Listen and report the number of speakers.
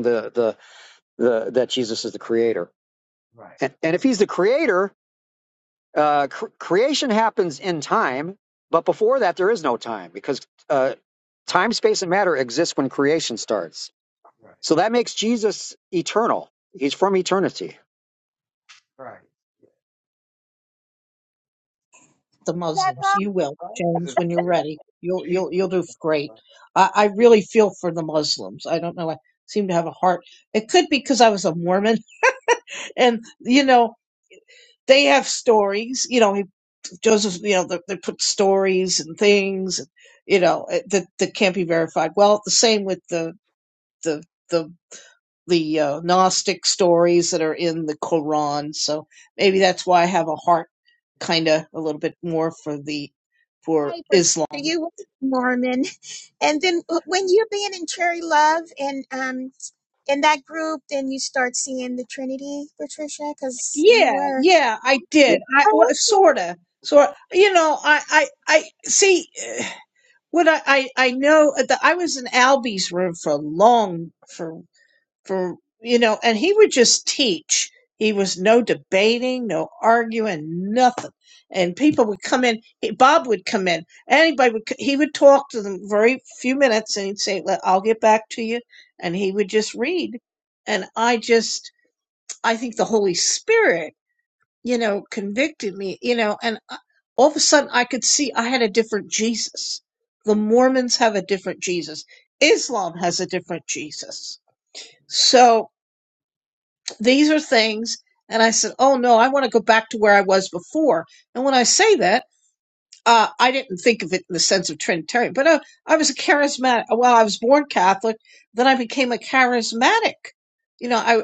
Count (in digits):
4